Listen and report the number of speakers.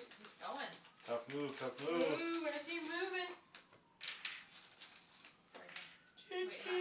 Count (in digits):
3